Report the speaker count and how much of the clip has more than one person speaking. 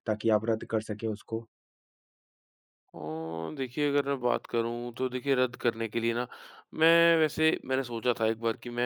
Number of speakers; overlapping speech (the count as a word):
two, no overlap